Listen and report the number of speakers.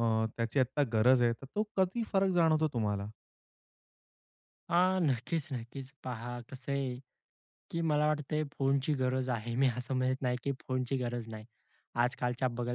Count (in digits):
2